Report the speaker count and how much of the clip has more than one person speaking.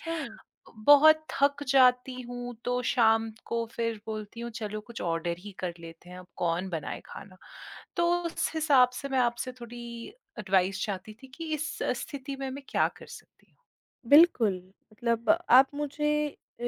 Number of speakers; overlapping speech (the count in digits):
2, about 1%